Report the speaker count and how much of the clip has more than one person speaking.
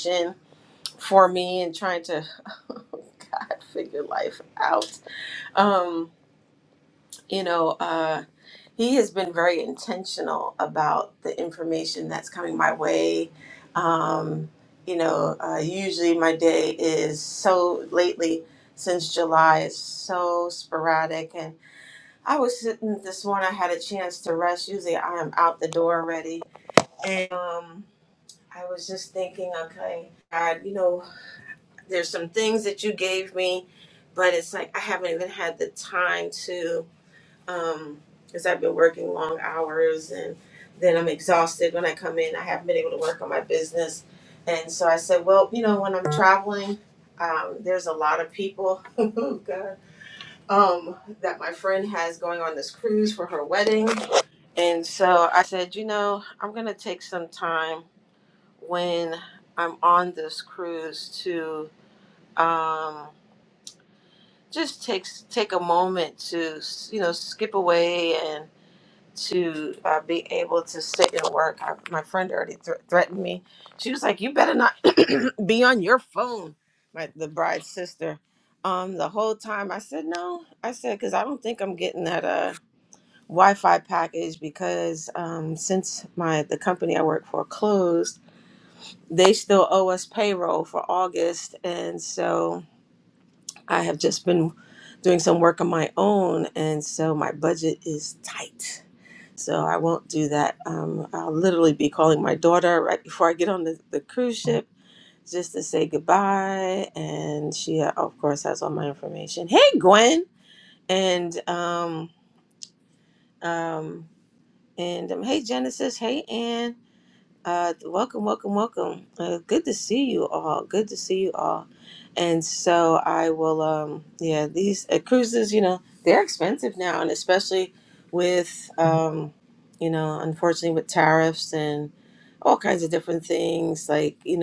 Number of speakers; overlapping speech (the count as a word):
one, no overlap